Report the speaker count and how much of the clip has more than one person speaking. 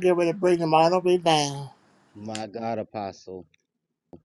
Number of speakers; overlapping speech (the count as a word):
two, no overlap